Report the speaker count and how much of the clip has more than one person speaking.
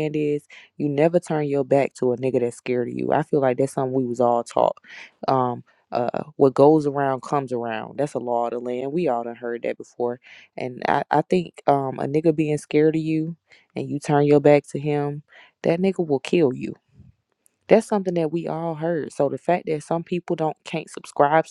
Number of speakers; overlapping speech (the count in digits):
1, no overlap